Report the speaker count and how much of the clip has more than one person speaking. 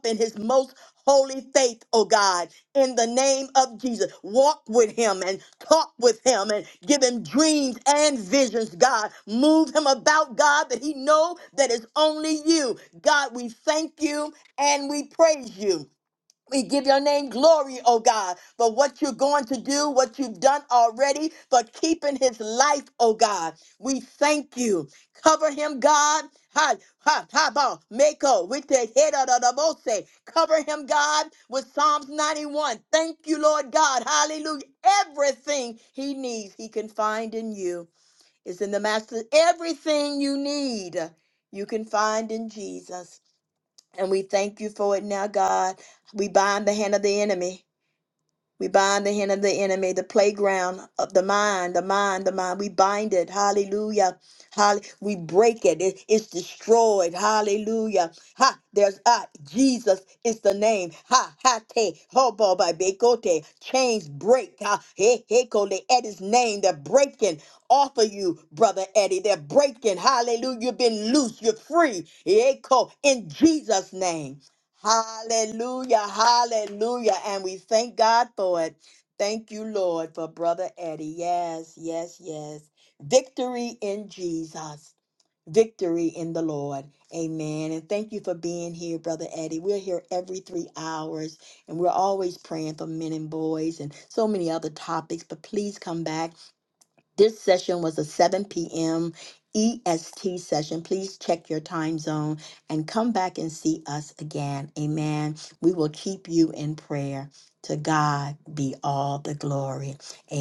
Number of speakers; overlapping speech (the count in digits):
1, no overlap